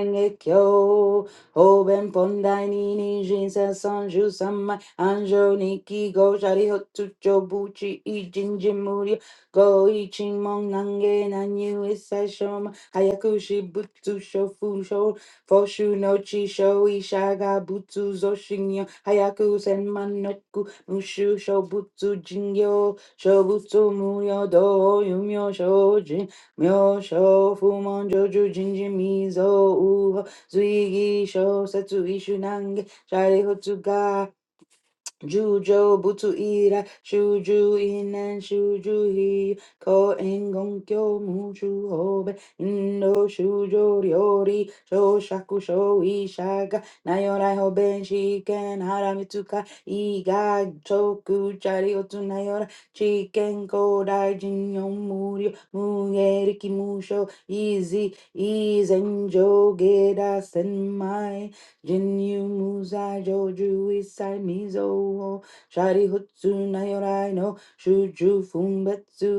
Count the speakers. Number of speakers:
1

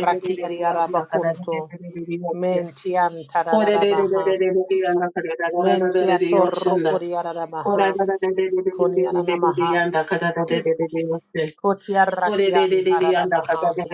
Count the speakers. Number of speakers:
2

